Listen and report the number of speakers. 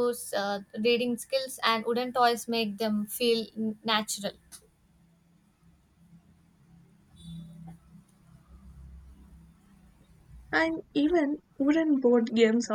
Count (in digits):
2